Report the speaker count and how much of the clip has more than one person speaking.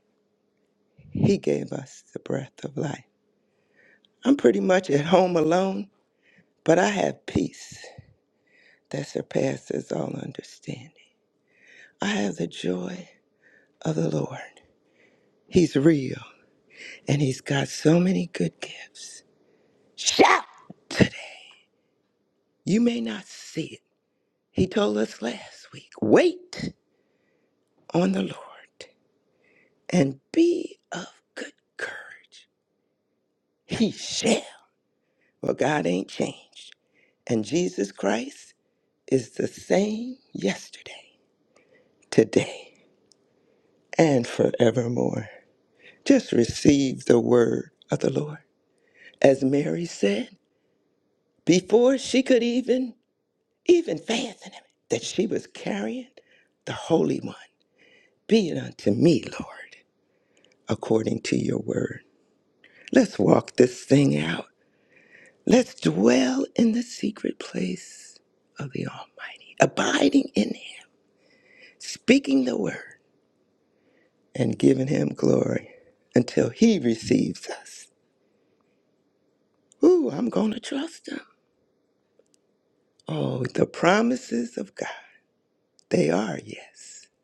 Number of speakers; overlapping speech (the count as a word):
one, no overlap